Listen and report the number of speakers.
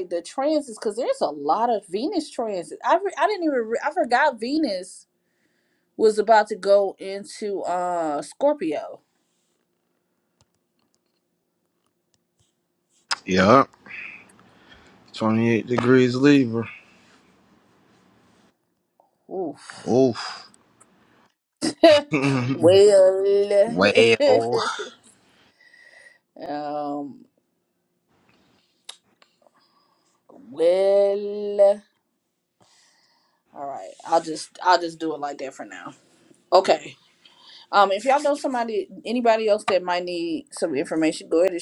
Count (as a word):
two